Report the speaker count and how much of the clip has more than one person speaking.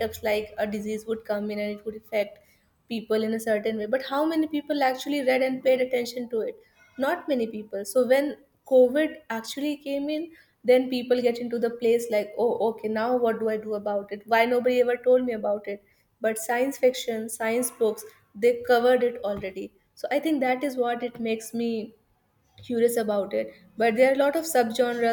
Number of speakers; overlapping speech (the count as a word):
one, no overlap